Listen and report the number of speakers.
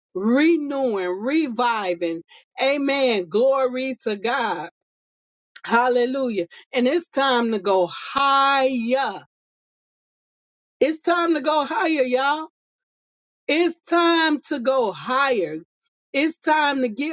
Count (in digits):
1